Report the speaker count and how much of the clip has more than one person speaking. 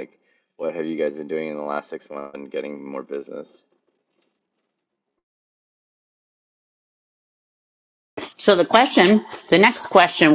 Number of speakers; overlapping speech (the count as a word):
two, no overlap